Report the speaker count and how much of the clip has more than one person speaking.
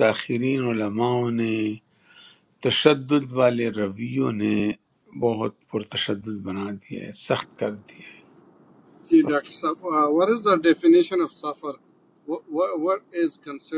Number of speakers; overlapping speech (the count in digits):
2, no overlap